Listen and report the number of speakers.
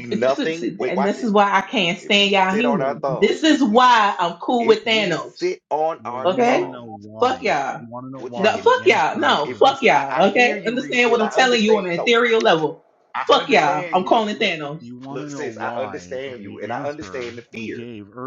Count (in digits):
3